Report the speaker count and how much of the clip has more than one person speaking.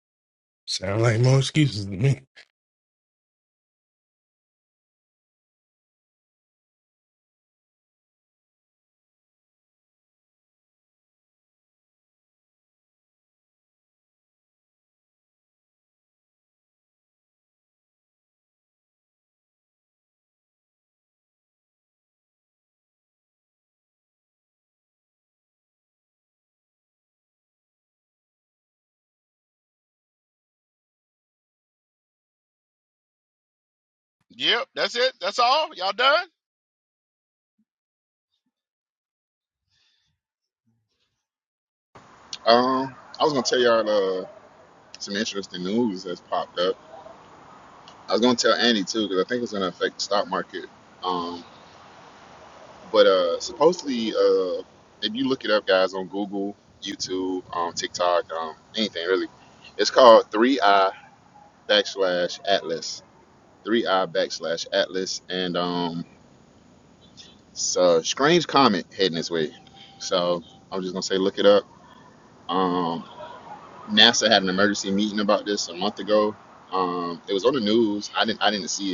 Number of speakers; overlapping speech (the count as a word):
three, no overlap